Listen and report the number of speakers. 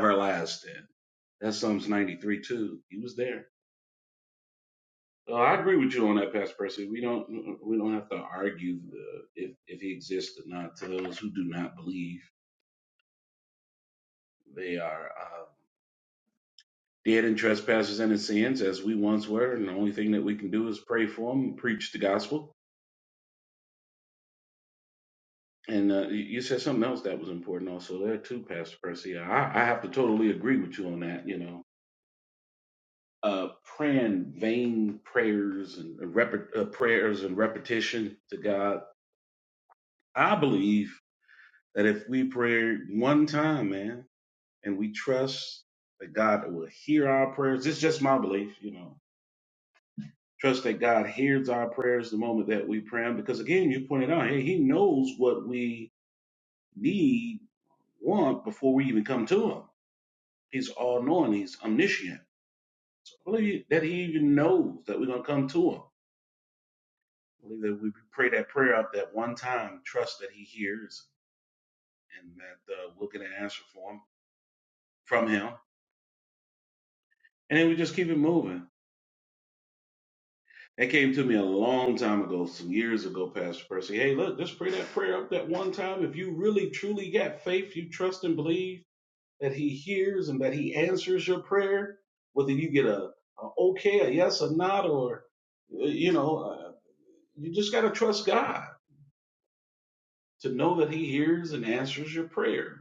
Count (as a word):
one